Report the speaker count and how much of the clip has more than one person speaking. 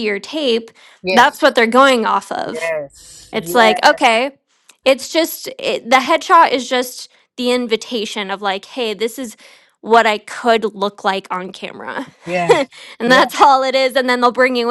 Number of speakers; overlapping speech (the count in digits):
2, about 8%